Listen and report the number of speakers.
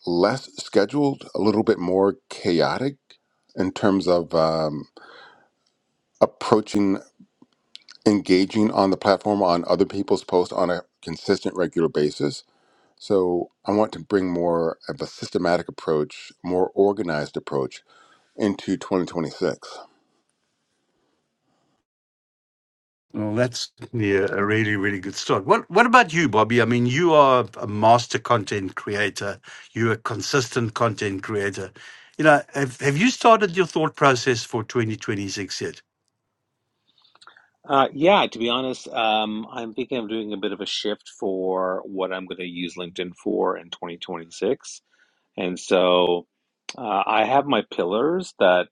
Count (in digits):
3